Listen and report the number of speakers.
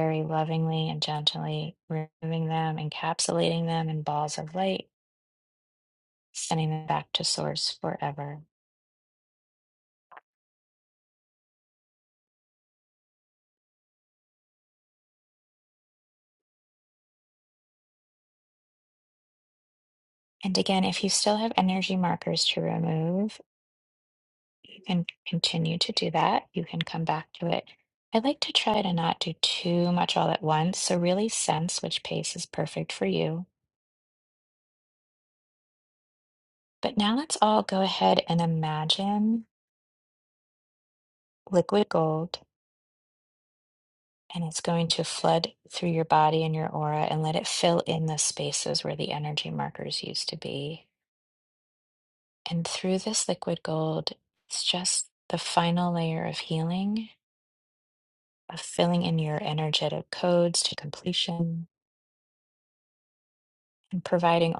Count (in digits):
1